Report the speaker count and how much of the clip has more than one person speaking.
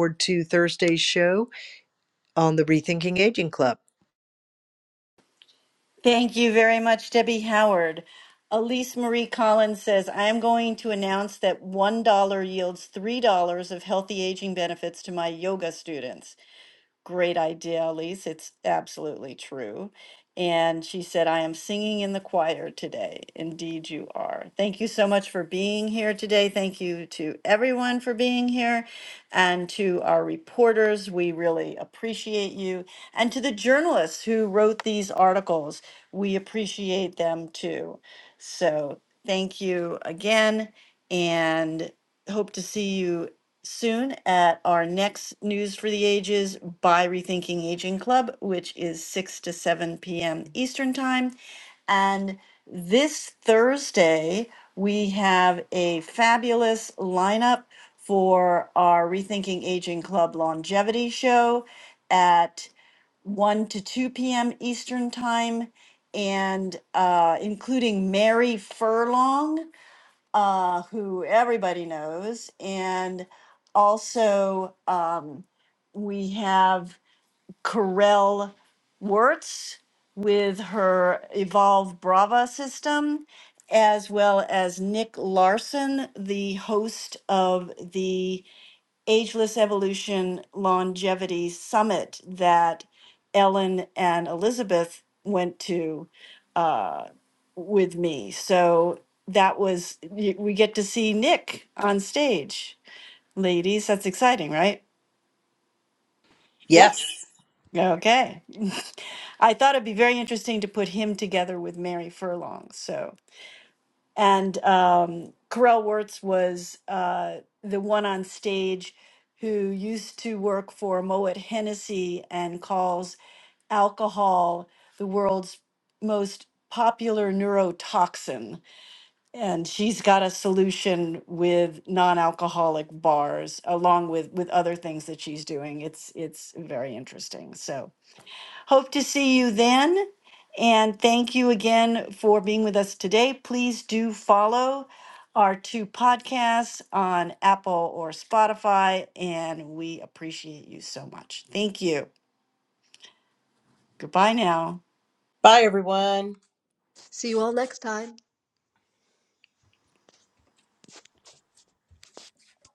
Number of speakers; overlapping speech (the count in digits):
4, under 1%